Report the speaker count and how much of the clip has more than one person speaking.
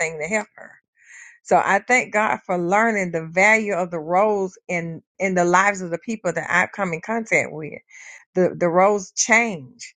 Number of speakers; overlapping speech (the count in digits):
1, no overlap